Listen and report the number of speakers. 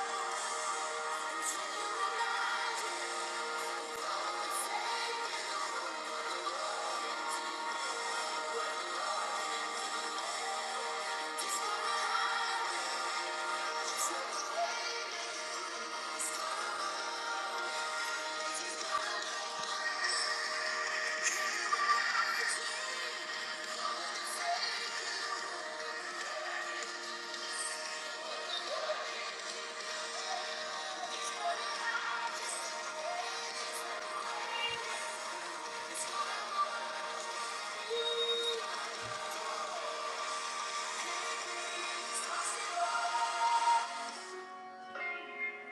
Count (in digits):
0